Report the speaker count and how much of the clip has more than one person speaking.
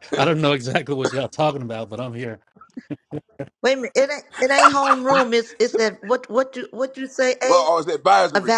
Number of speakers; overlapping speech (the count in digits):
3, about 5%